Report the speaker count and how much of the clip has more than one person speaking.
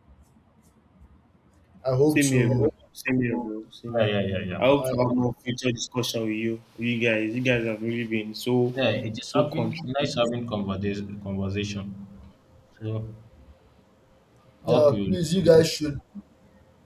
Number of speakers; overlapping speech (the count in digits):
3, about 17%